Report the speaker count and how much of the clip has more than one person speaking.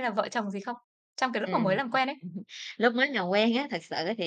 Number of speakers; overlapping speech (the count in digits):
2, about 7%